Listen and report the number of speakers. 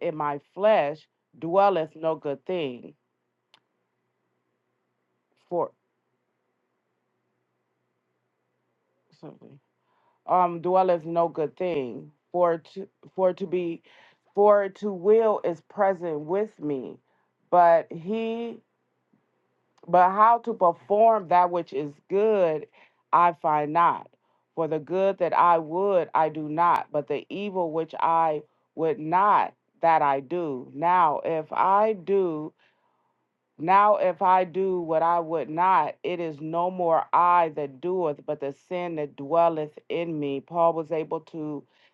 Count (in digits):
1